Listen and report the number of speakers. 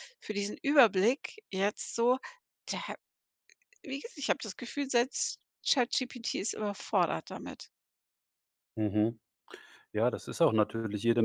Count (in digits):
2